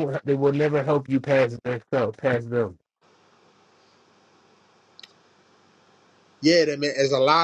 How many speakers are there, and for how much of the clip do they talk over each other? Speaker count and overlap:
two, no overlap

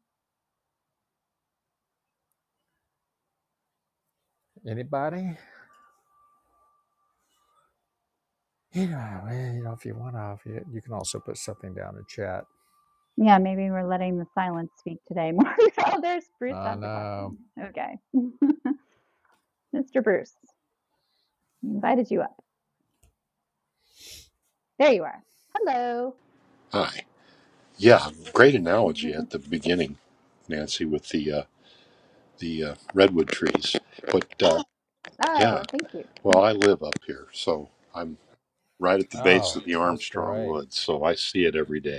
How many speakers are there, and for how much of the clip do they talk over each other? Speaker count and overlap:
three, about 6%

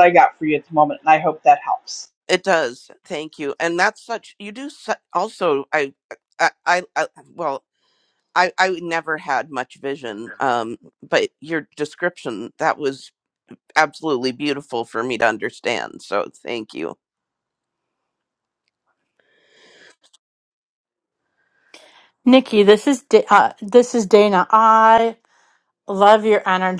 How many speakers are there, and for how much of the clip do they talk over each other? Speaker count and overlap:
three, no overlap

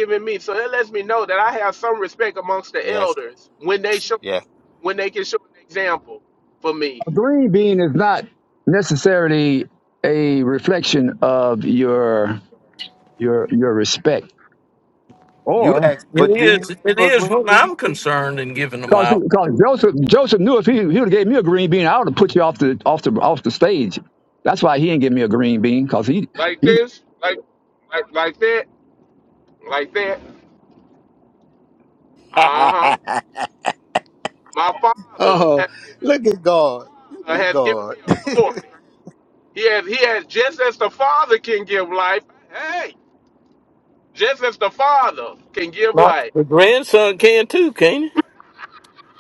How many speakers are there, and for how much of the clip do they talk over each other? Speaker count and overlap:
four, about 8%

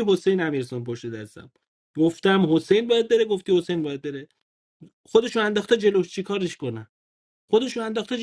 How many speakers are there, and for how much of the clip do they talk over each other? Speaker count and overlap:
one, no overlap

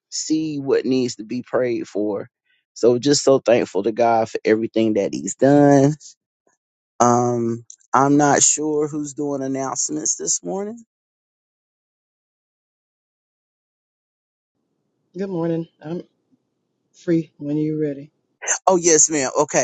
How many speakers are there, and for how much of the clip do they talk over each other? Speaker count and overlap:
two, no overlap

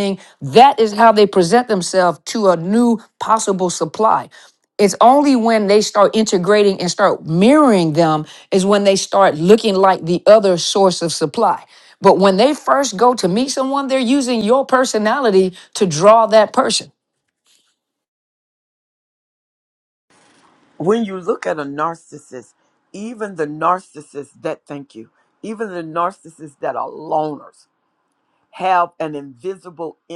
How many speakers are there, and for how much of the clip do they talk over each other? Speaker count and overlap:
two, no overlap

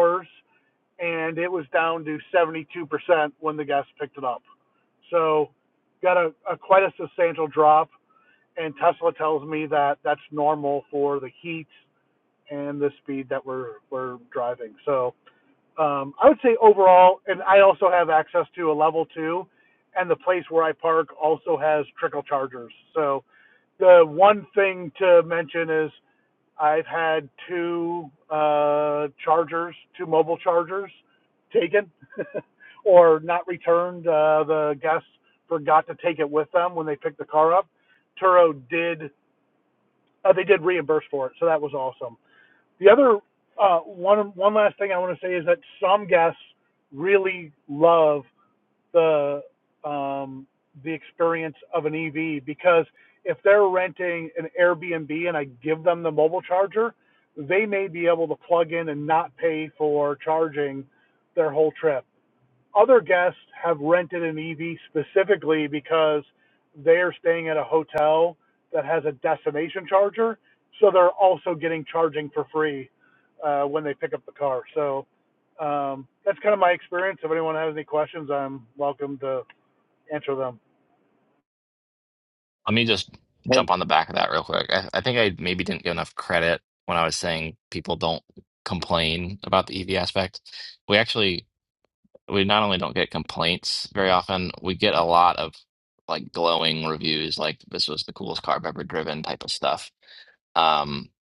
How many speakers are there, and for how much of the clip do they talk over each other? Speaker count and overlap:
two, no overlap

